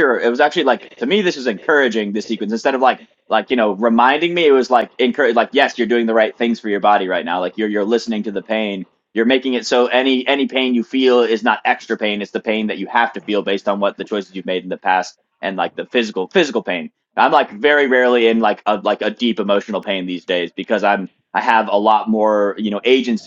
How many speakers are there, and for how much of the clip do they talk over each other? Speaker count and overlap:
1, no overlap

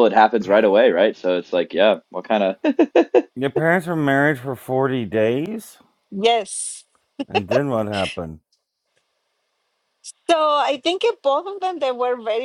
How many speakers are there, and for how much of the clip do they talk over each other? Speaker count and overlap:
3, no overlap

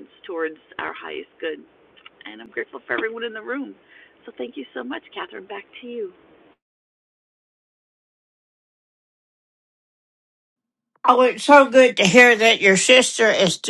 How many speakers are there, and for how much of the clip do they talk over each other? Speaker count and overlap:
2, no overlap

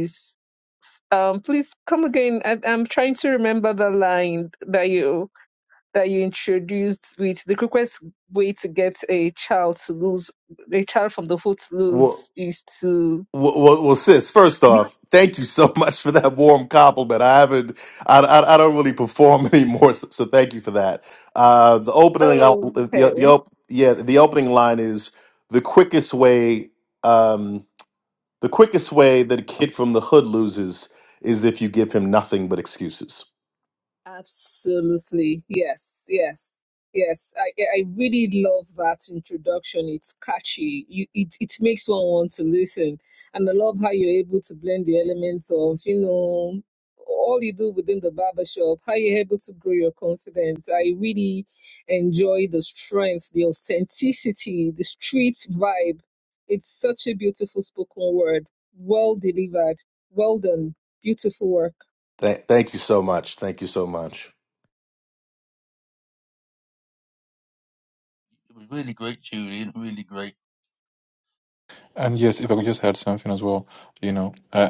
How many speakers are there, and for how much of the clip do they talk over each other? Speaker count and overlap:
4, about 1%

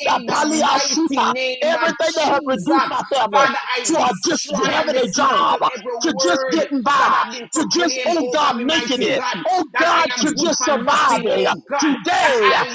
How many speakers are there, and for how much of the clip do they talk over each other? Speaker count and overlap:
2, about 87%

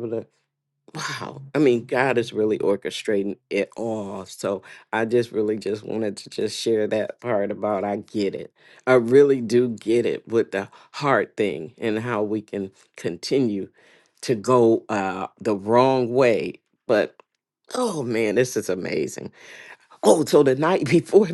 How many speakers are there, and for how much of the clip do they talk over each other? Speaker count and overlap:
1, no overlap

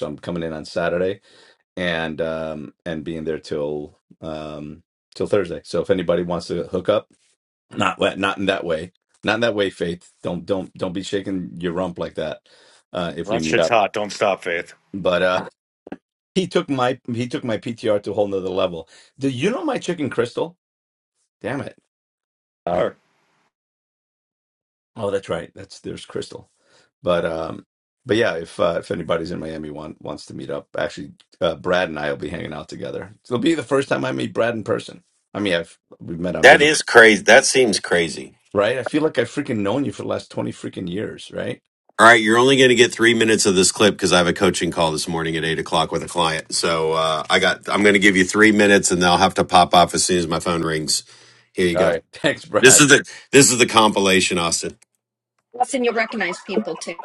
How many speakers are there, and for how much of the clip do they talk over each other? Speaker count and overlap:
4, about 2%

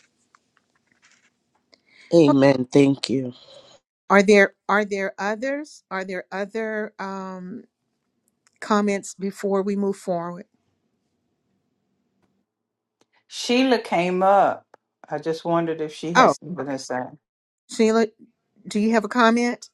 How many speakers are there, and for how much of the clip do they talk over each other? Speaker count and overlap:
3, about 3%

